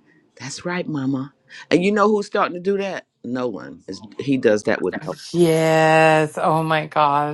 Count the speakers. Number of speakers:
two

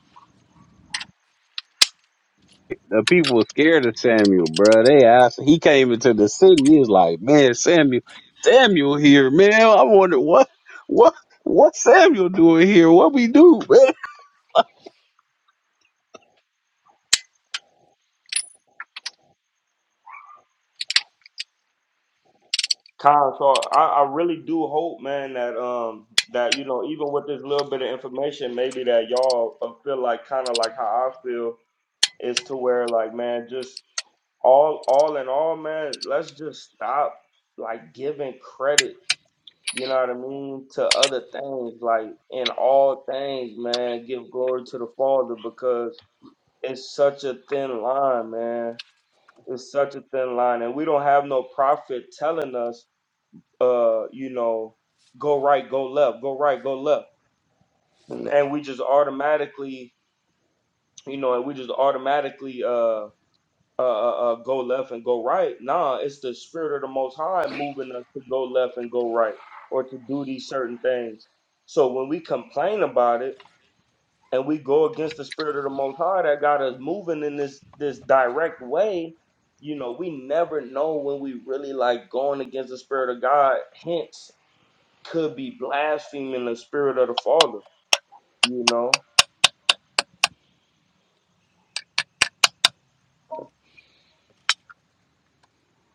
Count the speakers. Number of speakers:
two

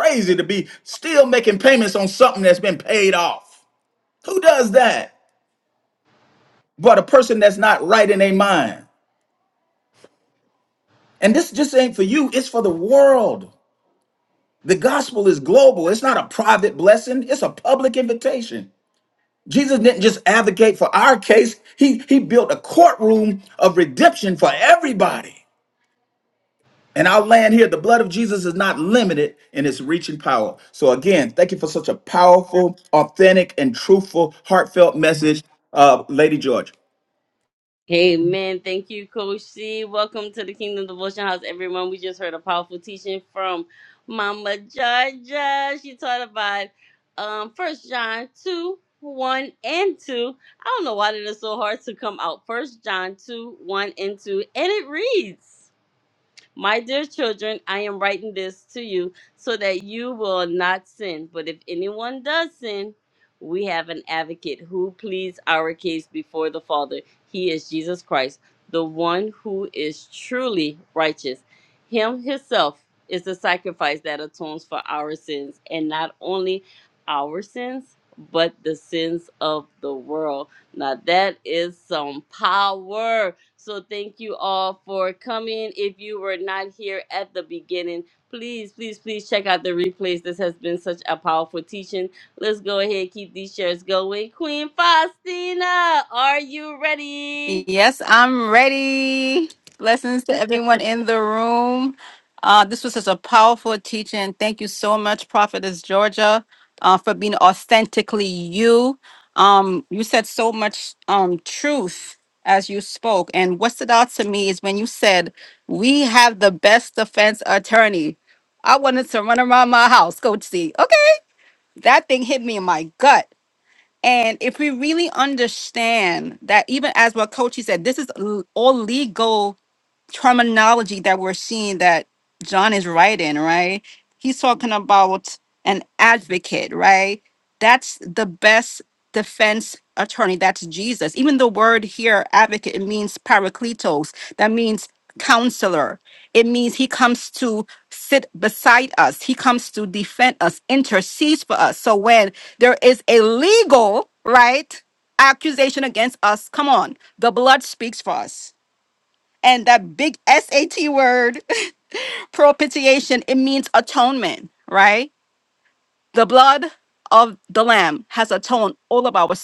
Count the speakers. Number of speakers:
three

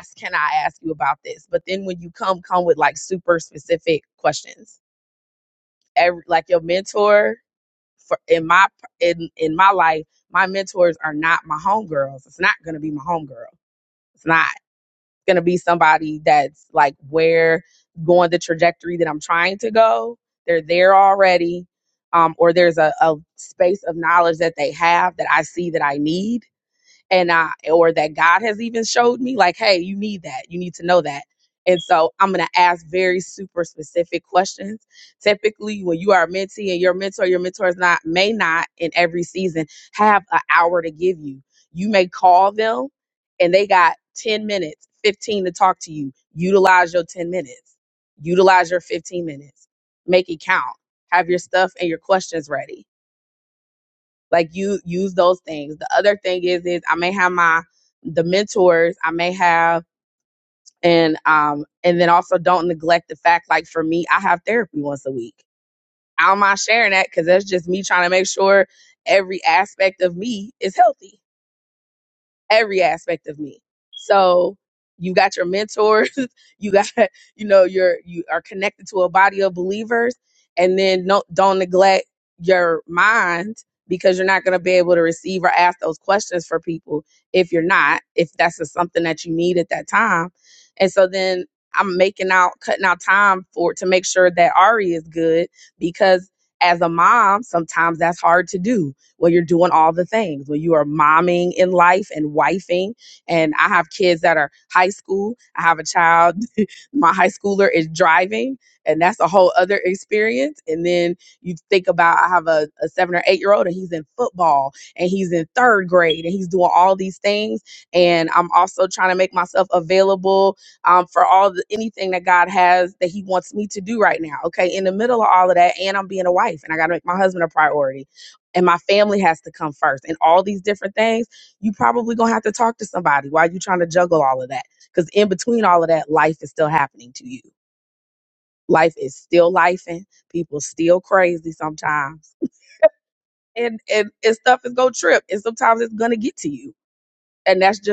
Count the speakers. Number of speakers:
one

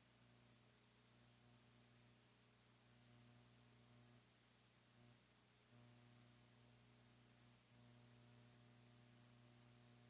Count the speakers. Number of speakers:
zero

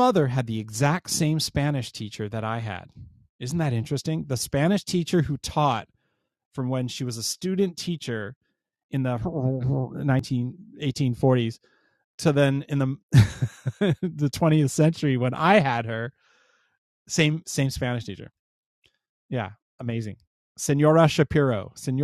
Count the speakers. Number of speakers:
one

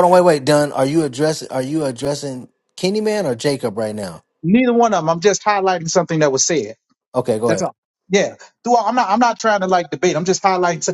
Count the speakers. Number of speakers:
two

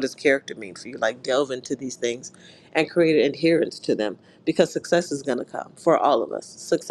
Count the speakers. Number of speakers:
one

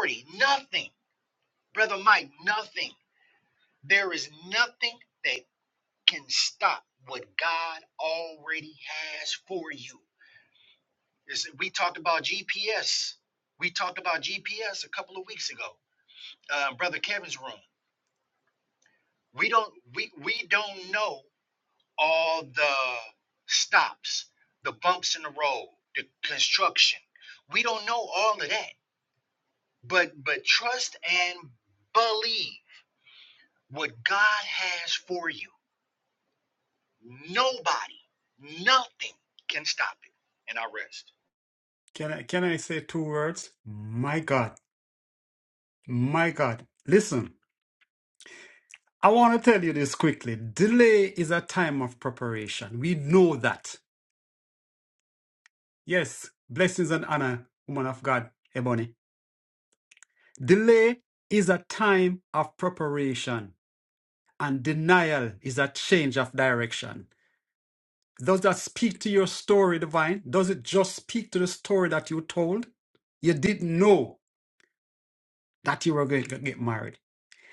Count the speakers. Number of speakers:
two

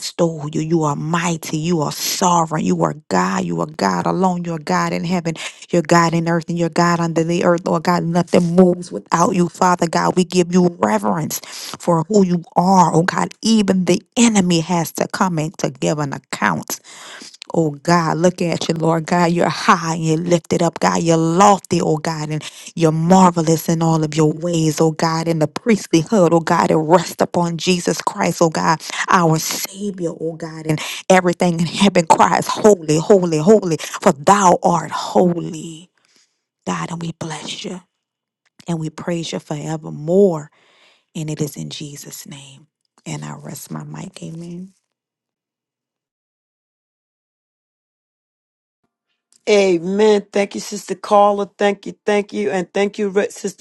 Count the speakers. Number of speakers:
two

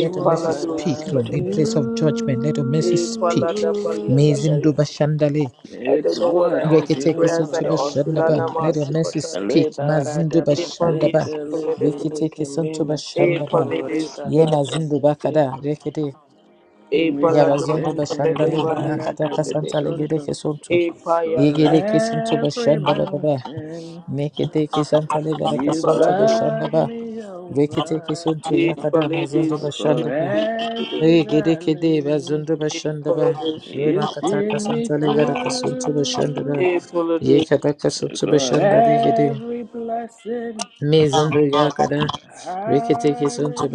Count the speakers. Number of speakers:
three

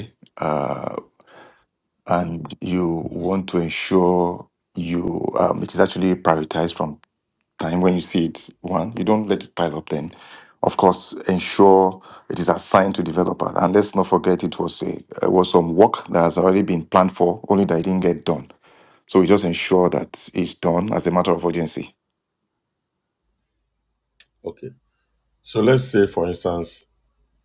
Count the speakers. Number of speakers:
two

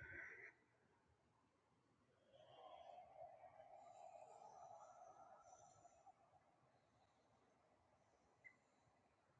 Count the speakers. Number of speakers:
zero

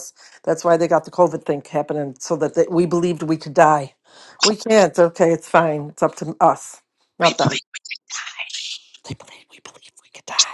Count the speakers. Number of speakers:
one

